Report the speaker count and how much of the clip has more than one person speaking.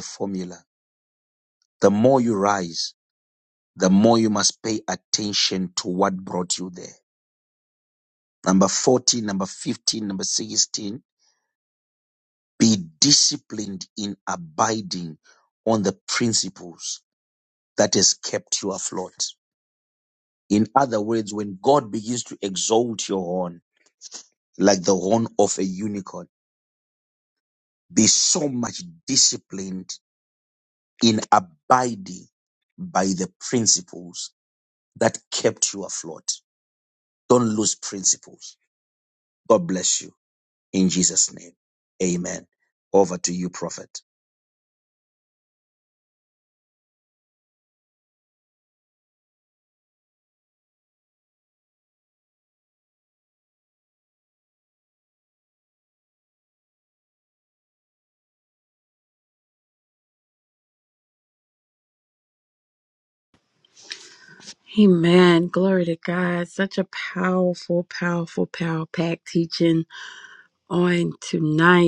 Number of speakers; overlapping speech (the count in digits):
2, no overlap